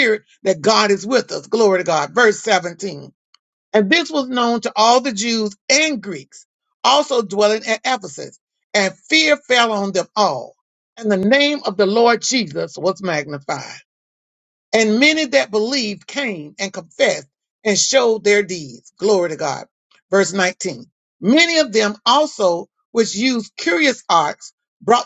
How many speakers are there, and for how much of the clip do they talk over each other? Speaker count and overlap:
1, no overlap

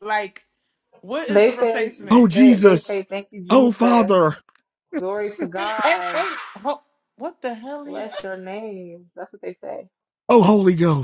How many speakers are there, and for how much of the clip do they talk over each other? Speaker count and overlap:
3, about 24%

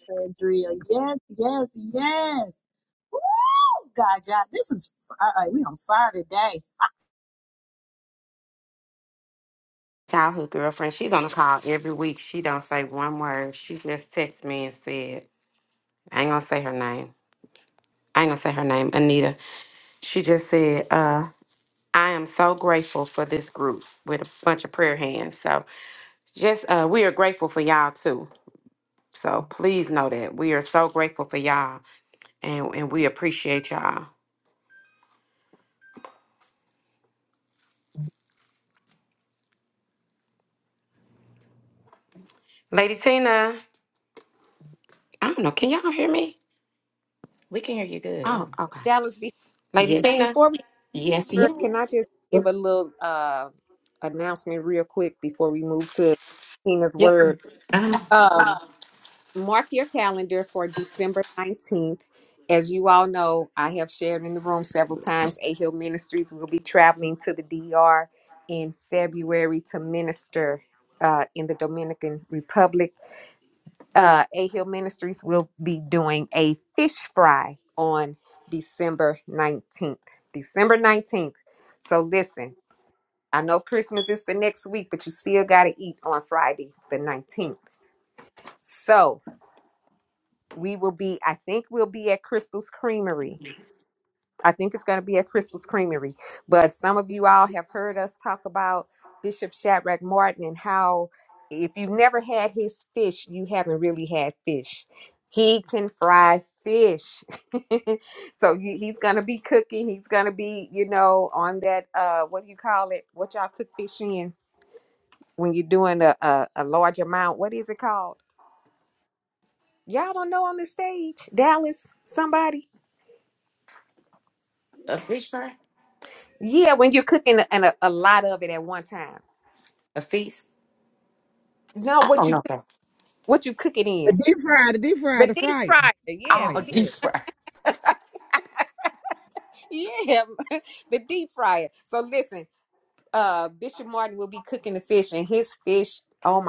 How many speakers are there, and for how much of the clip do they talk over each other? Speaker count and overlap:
6, about 2%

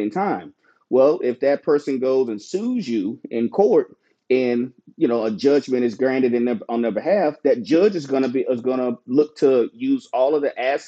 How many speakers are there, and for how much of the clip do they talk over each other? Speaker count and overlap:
1, no overlap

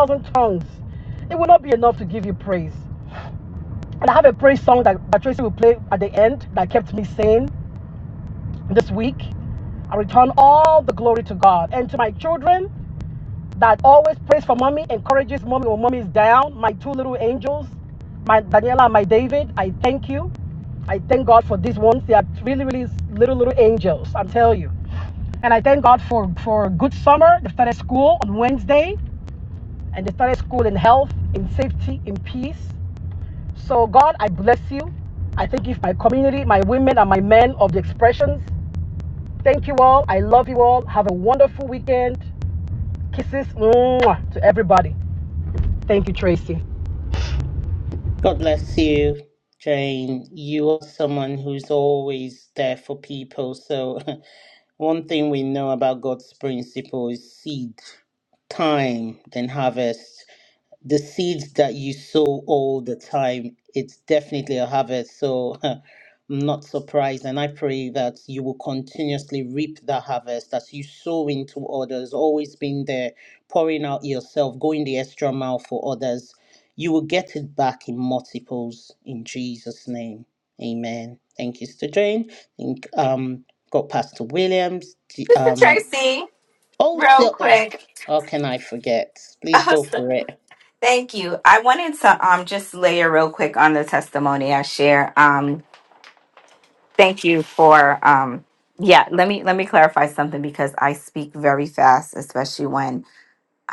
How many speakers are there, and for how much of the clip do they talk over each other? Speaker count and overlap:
3, about 1%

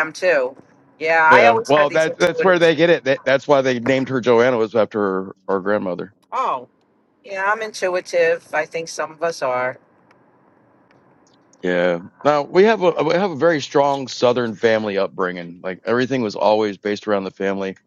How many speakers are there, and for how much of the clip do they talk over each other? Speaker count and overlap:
2, about 8%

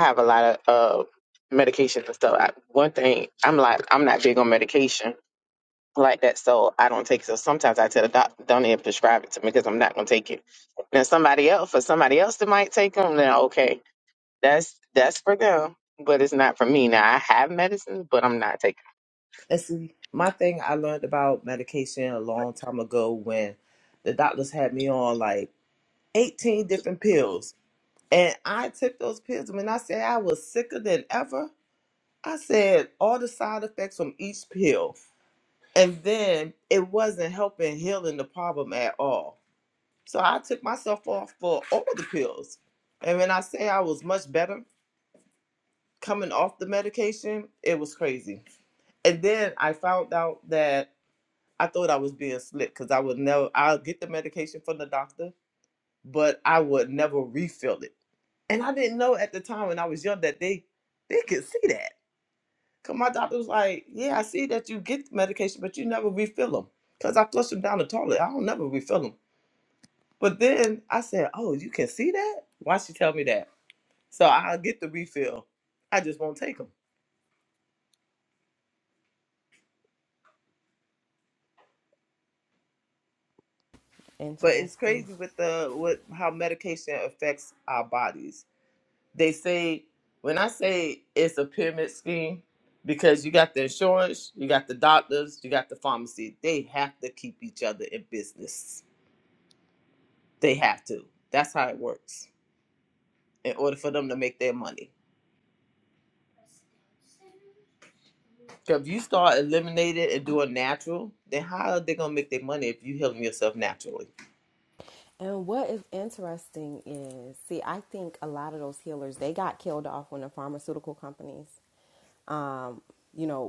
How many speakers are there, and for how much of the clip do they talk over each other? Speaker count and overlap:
3, under 1%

